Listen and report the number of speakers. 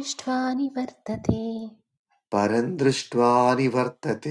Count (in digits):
2